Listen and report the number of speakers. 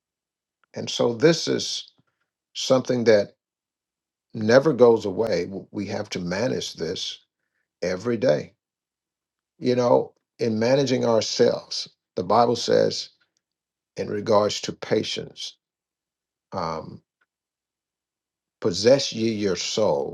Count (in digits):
1